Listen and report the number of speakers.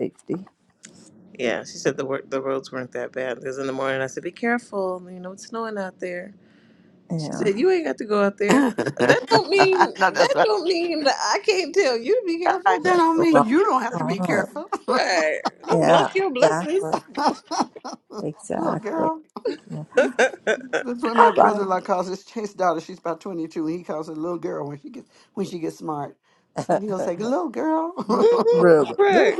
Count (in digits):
3